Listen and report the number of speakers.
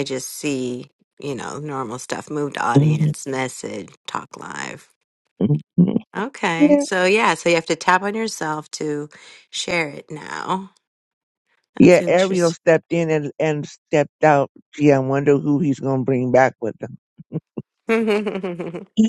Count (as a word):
two